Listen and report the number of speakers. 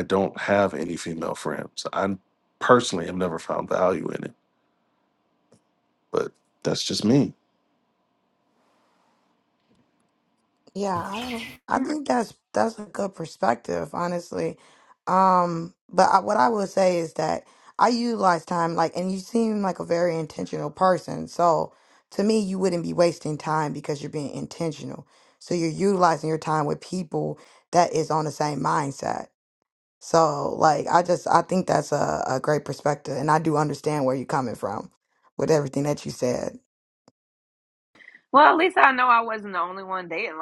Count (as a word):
three